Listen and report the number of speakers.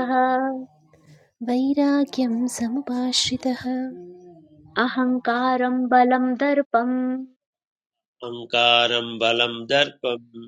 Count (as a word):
three